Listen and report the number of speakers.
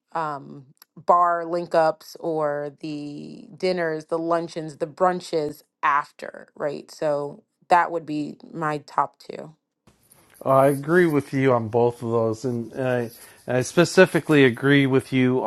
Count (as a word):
two